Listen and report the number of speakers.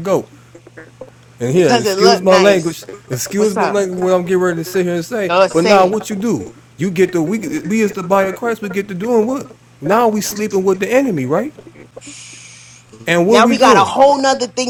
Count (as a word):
two